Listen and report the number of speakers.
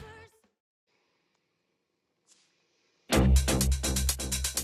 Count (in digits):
0